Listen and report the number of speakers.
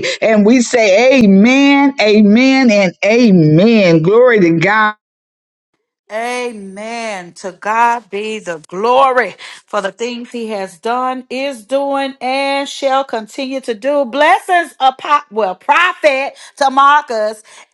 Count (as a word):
two